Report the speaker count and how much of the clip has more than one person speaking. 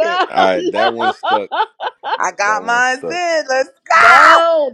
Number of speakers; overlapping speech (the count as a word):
three, about 29%